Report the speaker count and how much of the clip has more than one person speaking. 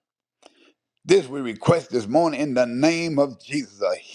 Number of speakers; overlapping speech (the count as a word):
one, no overlap